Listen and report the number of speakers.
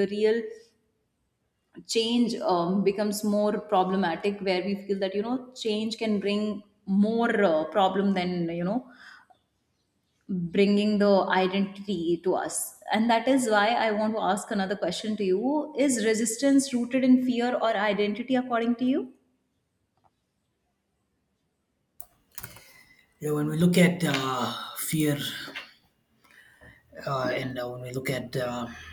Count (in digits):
2